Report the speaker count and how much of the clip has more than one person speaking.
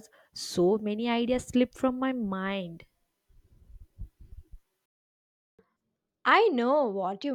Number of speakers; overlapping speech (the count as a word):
two, no overlap